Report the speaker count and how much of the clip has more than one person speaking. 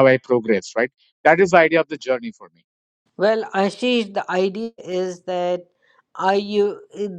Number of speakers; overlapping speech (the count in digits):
2, no overlap